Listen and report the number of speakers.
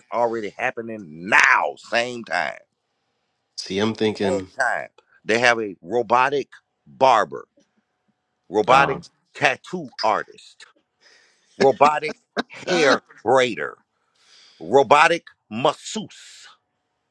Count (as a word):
two